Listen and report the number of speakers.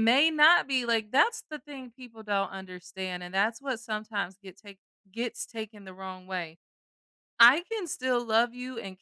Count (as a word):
one